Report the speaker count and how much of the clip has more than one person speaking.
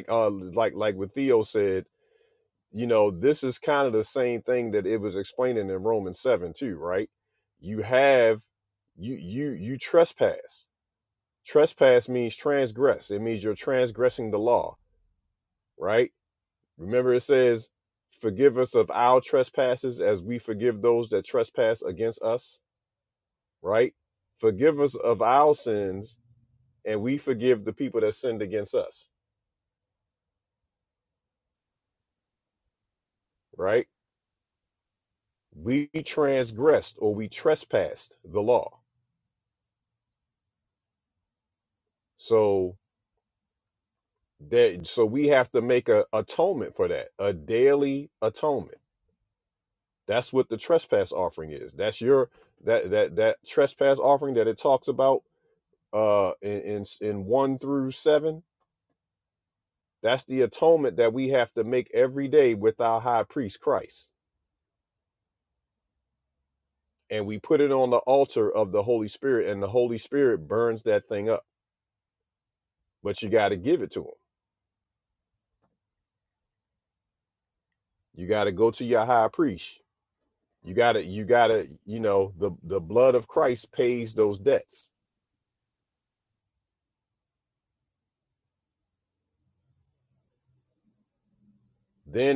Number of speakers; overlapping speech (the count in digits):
1, no overlap